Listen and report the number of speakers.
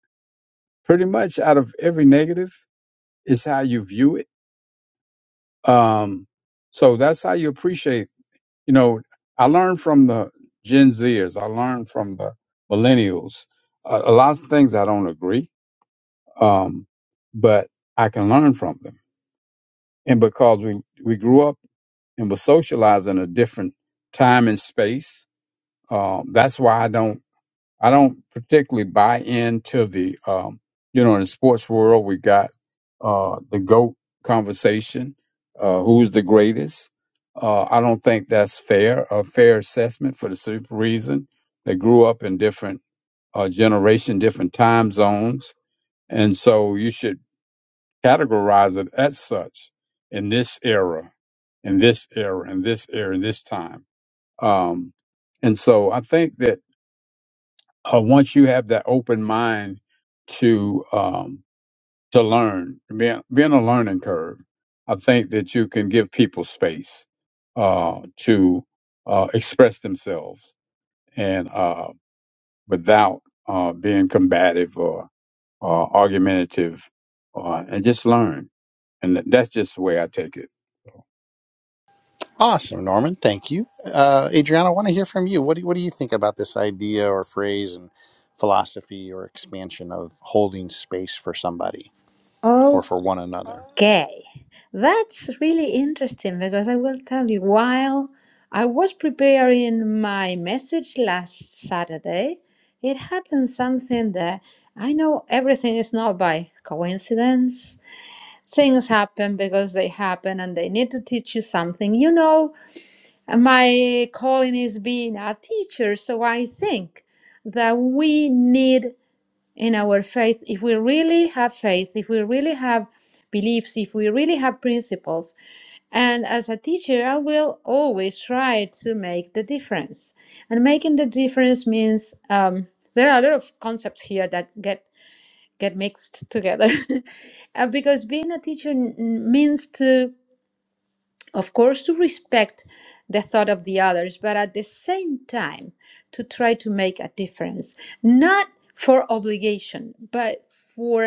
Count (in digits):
3